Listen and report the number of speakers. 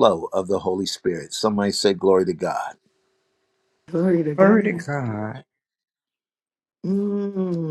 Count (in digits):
3